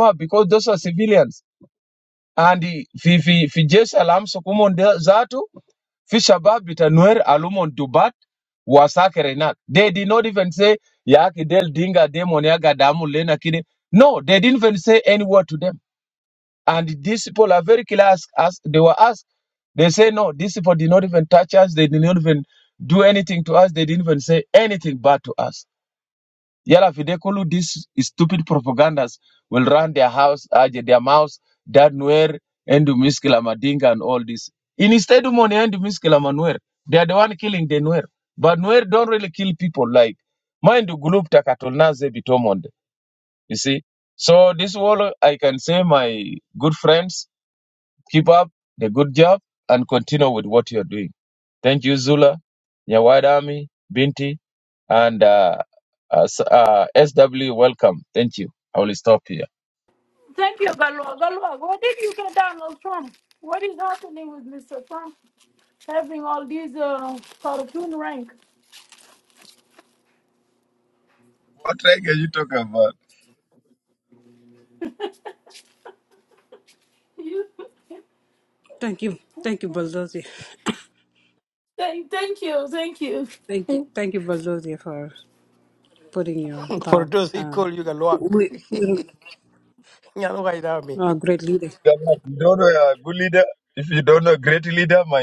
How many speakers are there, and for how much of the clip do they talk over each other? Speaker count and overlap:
4, about 1%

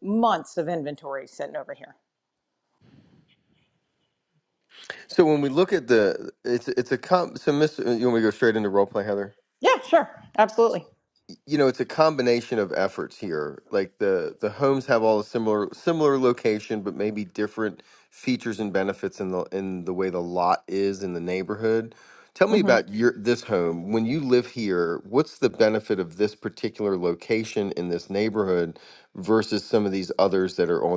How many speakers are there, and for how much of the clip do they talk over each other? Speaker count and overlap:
2, about 1%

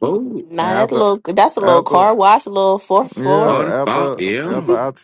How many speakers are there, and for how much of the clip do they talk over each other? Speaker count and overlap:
3, about 48%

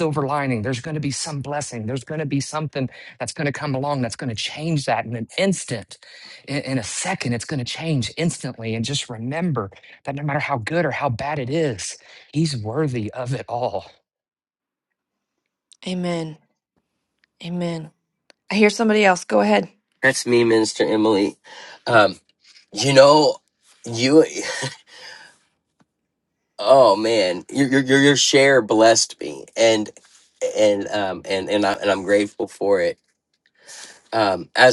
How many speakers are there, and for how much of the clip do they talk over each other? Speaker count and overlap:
3, no overlap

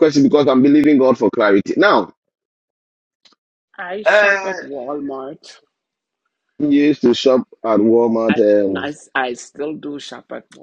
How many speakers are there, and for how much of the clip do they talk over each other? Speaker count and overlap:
2, about 11%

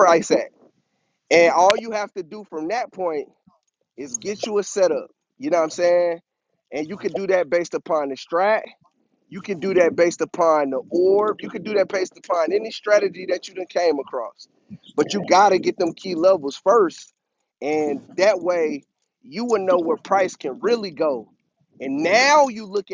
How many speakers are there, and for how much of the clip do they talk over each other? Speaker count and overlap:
1, no overlap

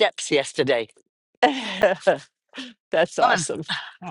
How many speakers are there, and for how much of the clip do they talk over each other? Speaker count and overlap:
2, about 10%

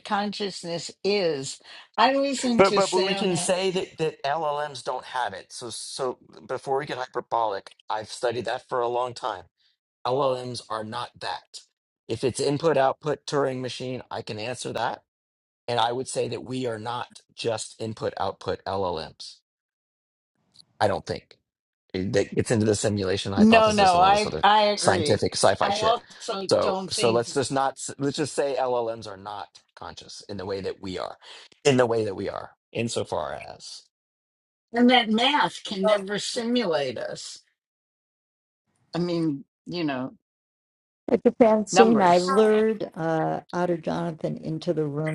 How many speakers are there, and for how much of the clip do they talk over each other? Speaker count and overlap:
3, about 10%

